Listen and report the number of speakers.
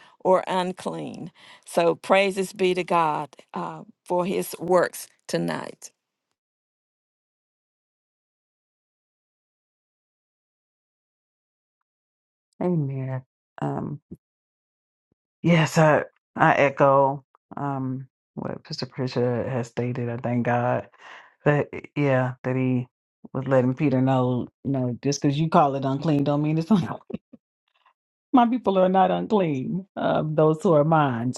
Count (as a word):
two